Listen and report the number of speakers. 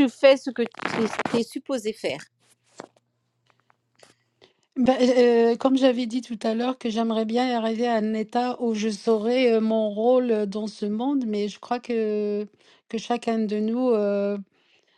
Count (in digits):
2